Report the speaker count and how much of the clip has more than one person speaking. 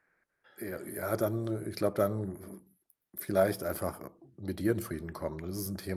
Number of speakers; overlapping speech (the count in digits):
1, no overlap